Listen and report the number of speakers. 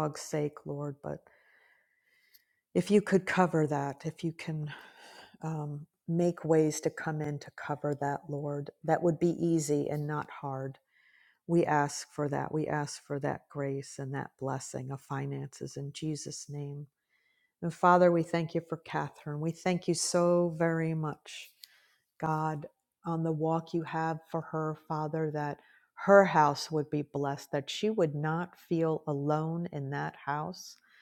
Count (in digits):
1